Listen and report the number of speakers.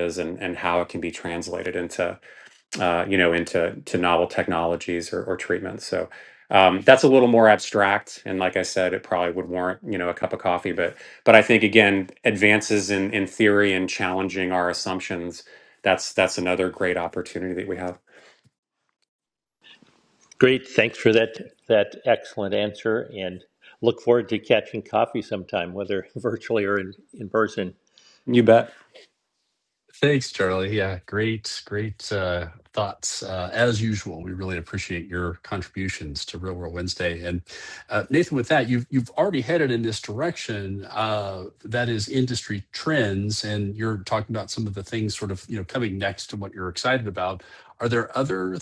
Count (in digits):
3